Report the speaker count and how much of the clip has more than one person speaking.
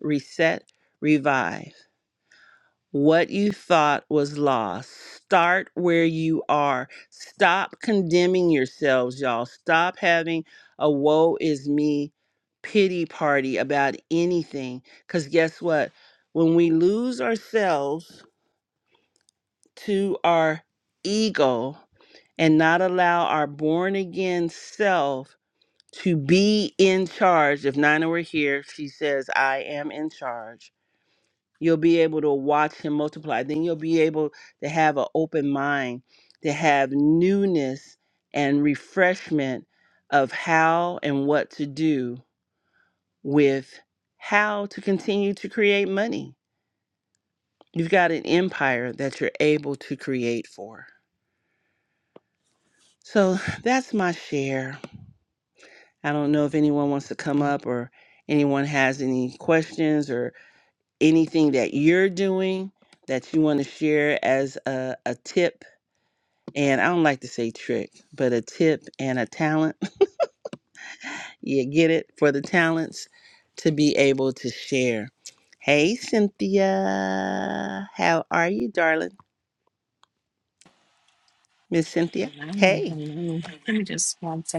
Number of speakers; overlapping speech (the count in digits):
2, about 1%